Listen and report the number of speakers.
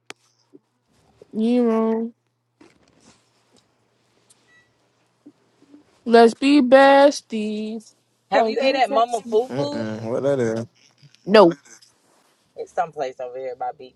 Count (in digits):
3